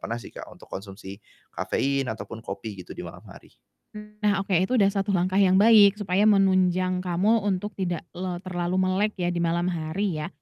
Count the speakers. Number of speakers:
2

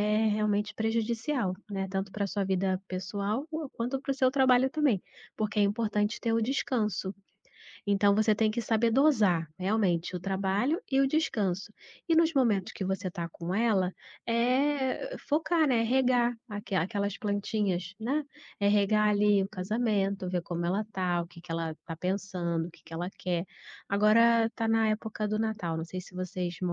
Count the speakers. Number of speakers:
1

